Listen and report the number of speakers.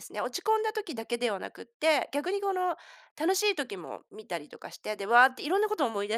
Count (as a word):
one